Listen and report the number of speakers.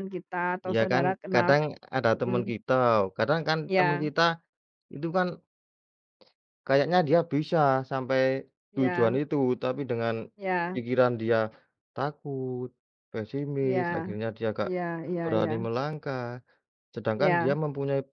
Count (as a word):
two